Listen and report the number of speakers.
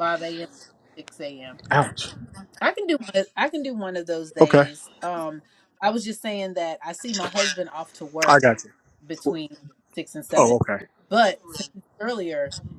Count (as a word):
two